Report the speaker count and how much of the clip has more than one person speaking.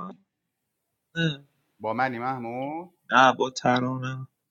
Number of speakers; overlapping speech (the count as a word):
two, no overlap